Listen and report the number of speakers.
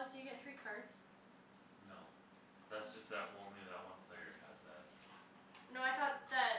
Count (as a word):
two